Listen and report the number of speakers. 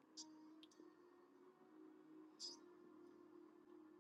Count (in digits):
0